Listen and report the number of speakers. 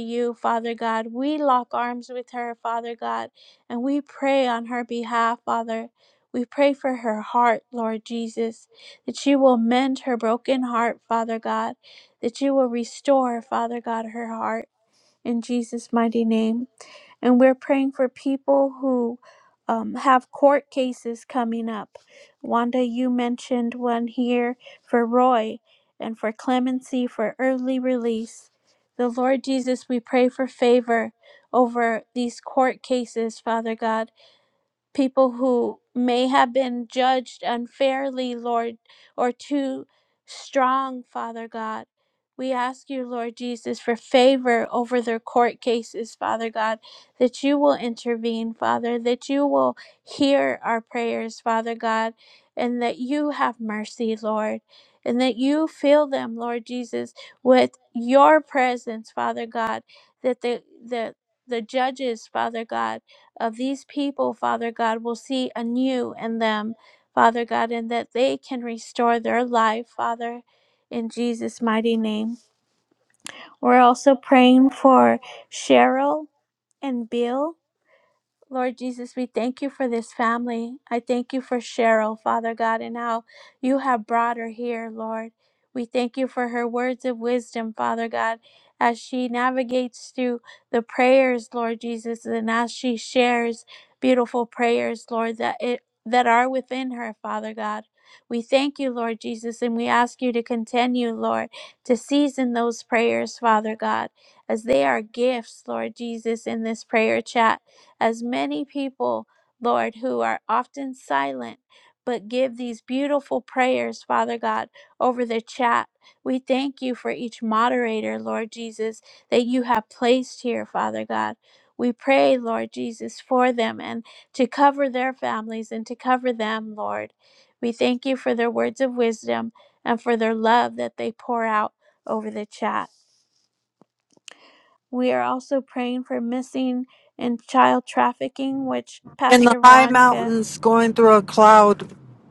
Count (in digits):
2